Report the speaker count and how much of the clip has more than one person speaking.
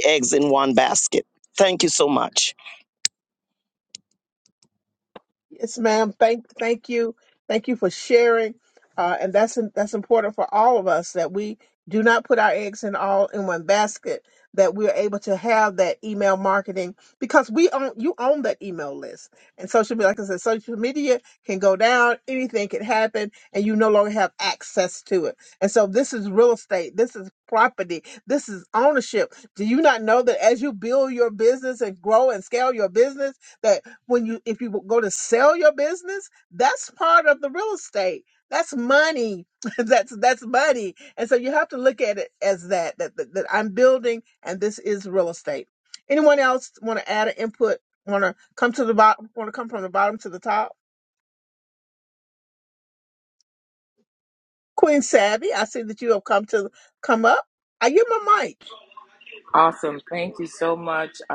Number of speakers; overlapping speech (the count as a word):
three, no overlap